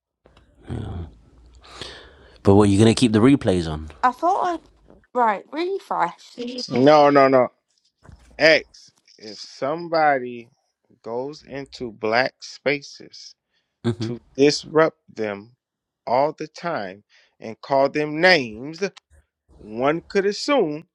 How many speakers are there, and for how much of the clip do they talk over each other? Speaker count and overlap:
three, about 1%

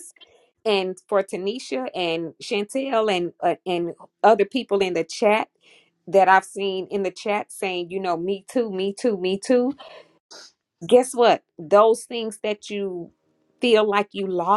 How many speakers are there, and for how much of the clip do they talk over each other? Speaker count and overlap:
one, no overlap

